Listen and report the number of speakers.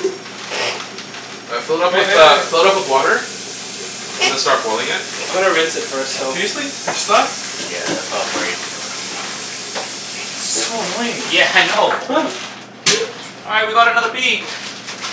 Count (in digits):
4